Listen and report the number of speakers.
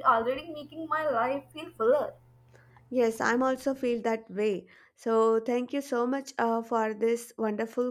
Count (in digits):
2